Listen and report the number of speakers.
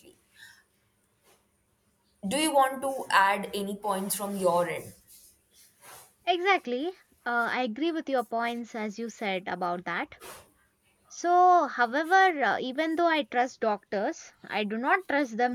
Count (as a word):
two